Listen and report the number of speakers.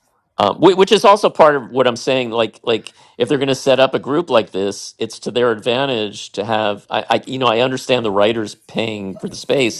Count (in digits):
1